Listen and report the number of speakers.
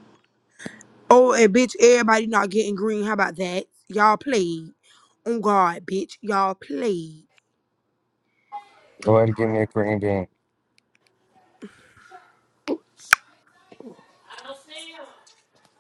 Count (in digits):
2